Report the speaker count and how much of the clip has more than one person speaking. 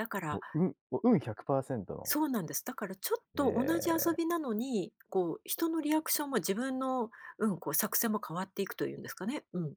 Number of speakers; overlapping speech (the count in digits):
2, about 3%